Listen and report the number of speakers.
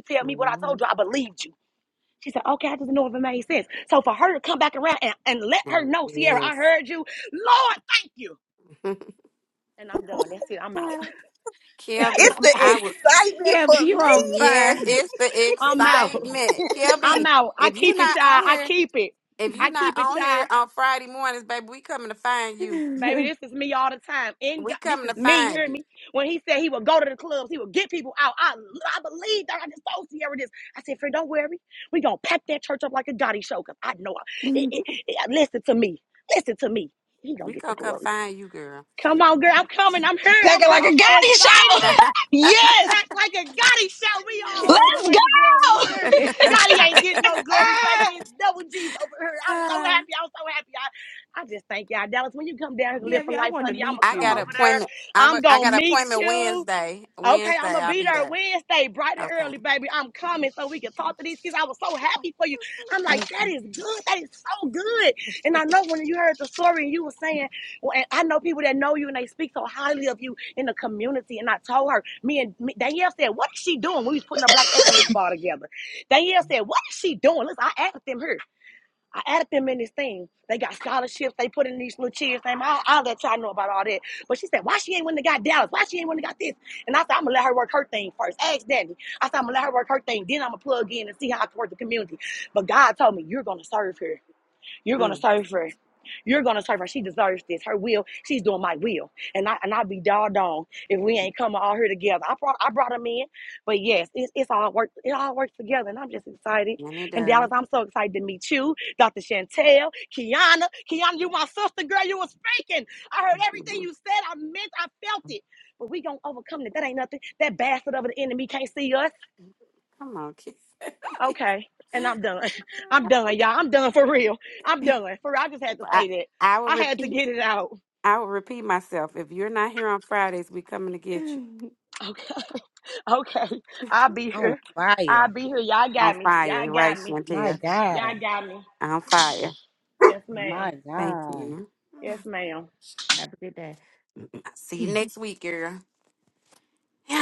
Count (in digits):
5